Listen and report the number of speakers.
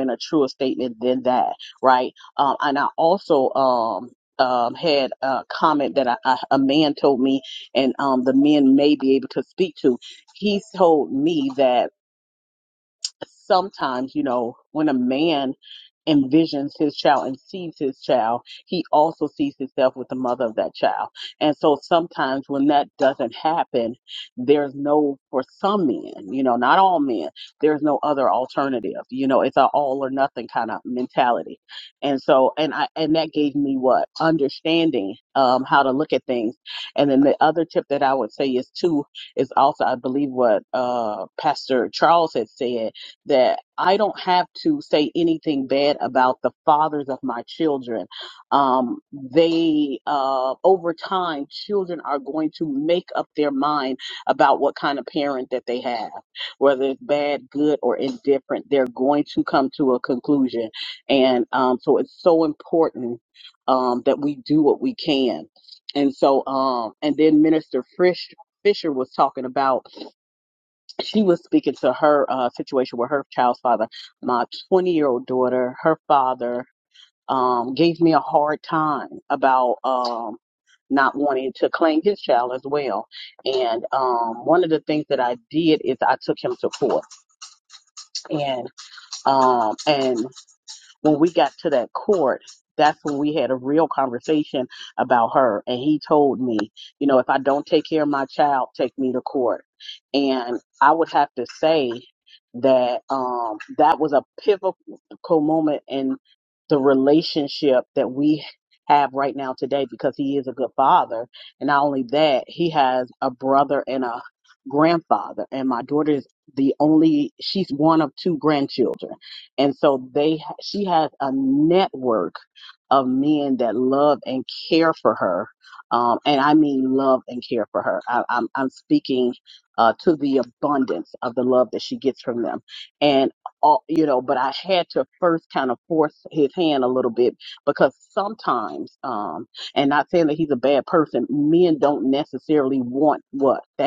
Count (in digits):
1